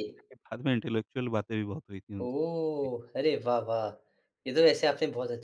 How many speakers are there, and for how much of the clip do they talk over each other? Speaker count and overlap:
2, about 3%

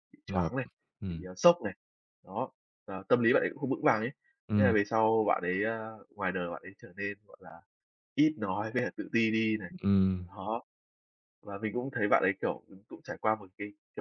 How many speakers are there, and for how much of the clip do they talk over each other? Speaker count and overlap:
2, about 4%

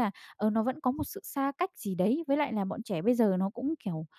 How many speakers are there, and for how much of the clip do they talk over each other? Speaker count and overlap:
1, no overlap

